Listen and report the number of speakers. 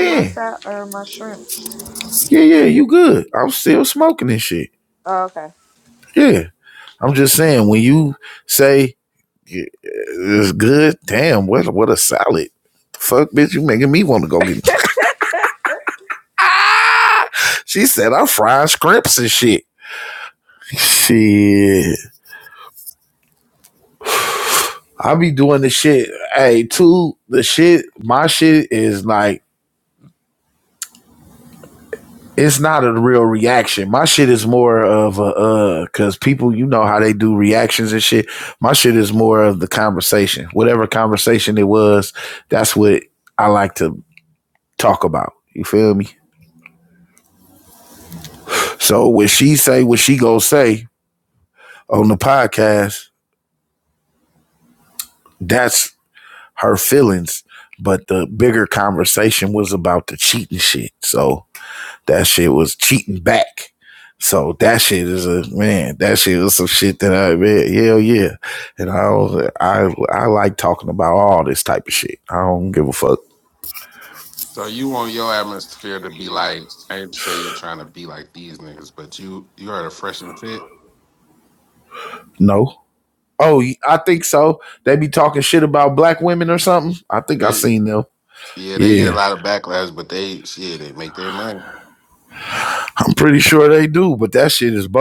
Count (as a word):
three